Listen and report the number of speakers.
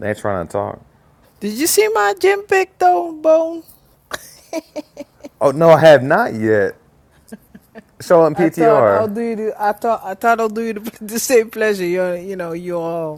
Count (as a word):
two